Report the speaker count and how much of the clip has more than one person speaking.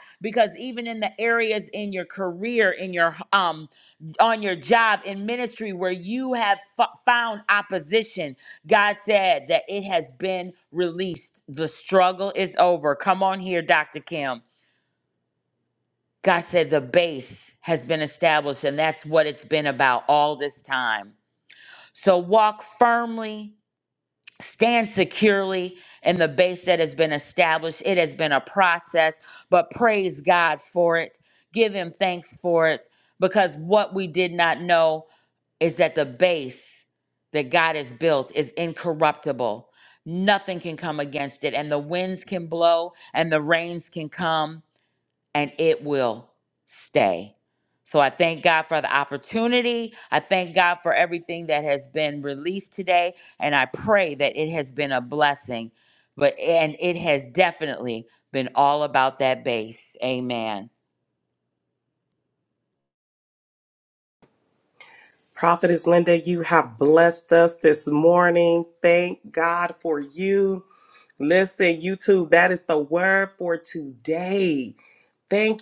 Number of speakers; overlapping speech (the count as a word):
two, no overlap